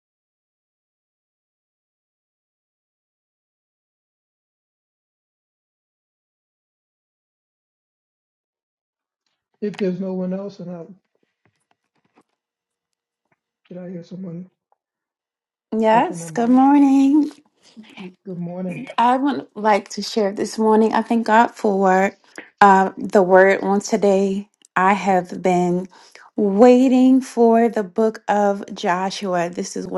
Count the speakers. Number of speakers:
2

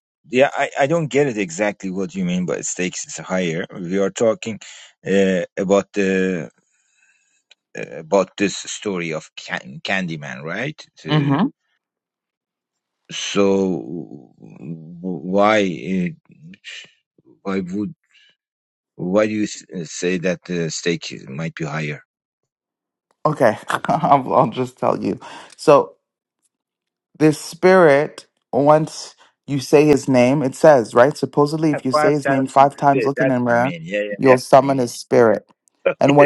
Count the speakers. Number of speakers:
2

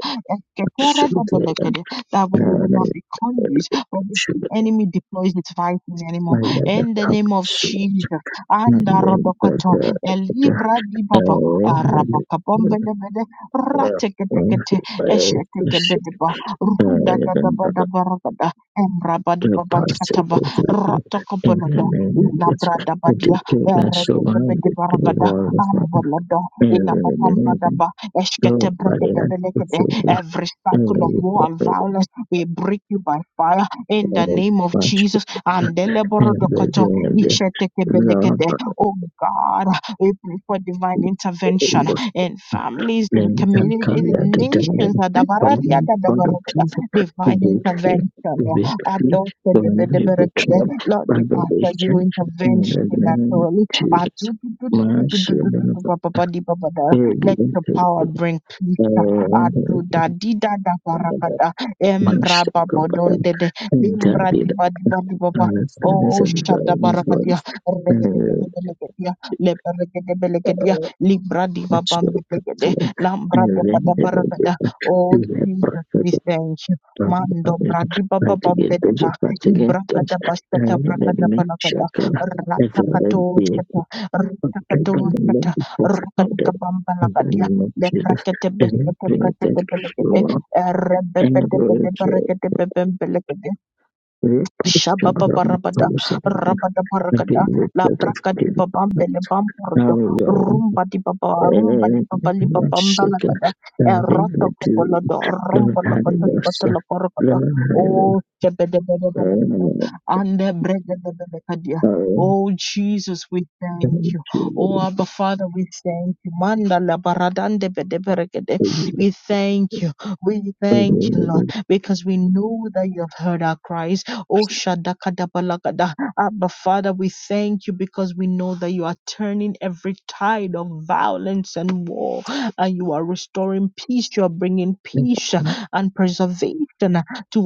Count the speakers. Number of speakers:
2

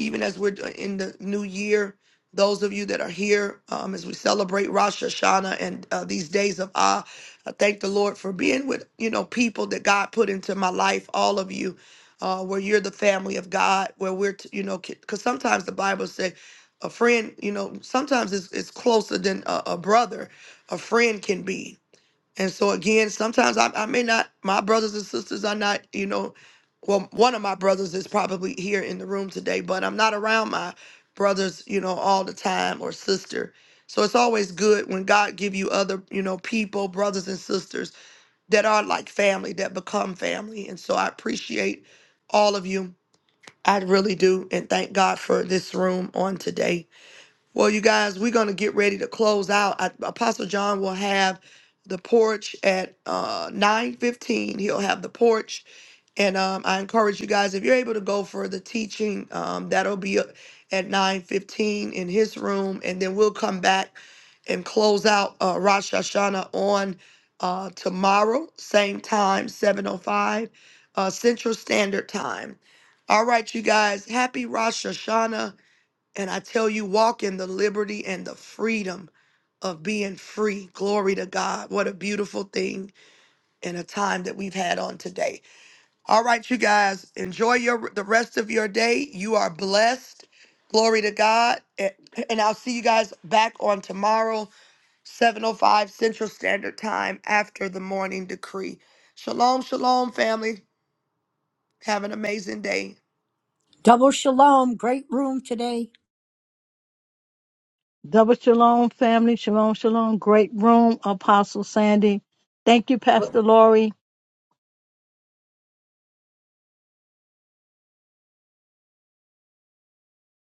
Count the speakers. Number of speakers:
3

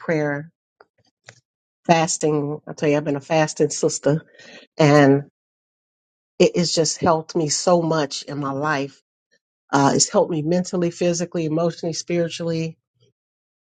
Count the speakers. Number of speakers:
1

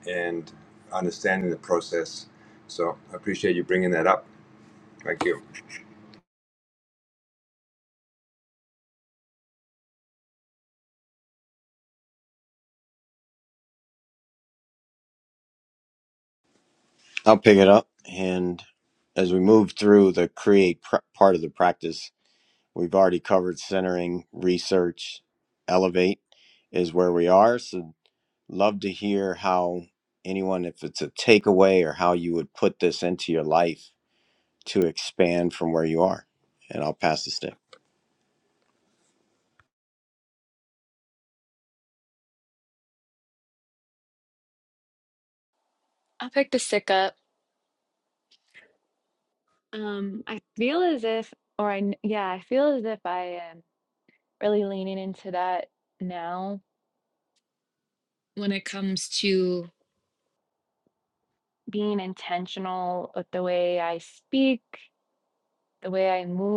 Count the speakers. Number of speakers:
3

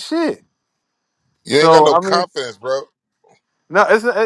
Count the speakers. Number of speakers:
2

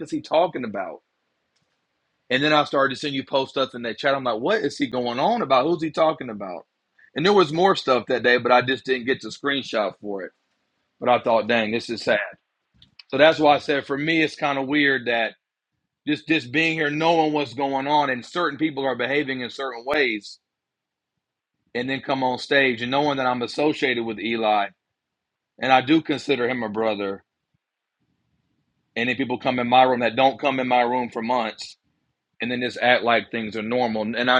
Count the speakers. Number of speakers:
1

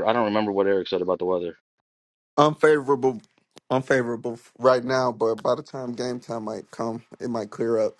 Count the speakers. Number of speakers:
2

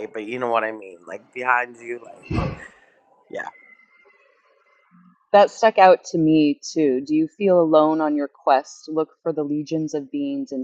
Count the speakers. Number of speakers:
2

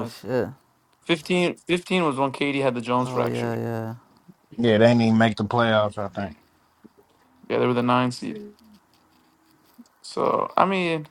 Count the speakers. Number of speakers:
3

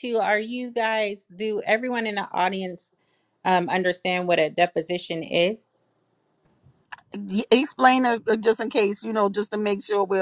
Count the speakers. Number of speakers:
2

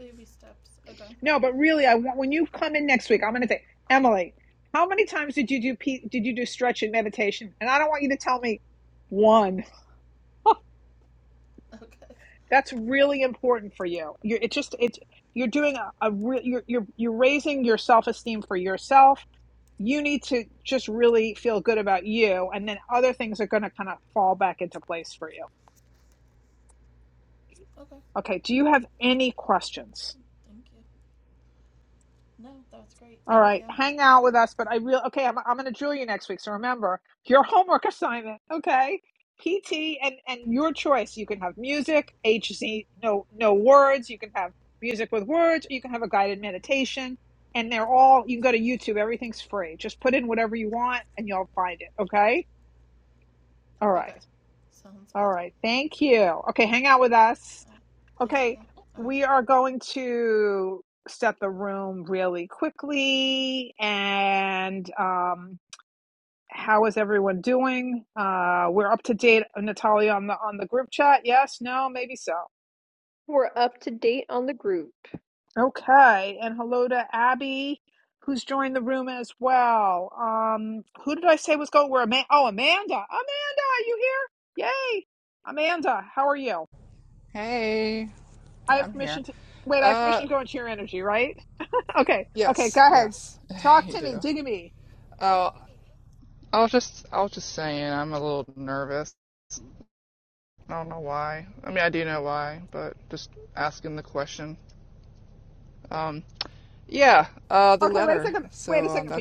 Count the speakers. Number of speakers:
4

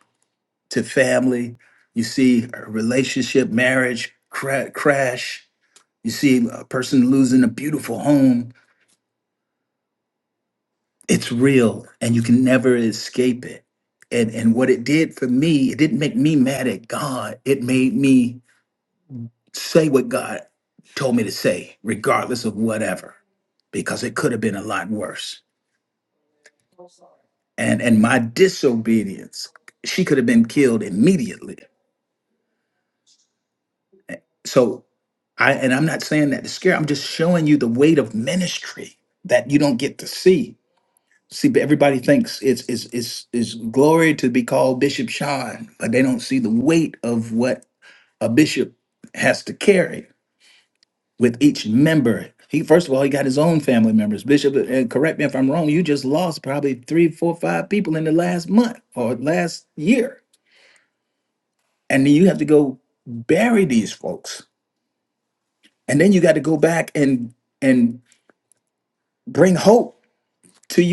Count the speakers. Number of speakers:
1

